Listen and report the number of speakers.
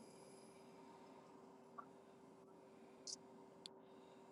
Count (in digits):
0